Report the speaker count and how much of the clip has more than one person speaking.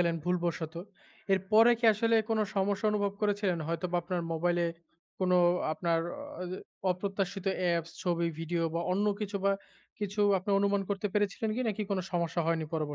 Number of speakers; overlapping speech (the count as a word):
one, no overlap